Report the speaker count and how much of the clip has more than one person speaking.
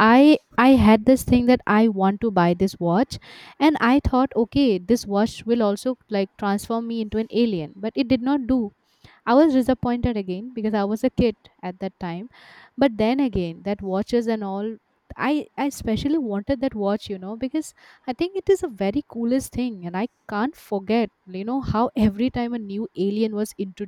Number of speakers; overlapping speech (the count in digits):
1, no overlap